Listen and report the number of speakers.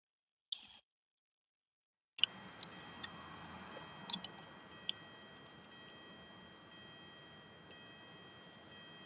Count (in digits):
0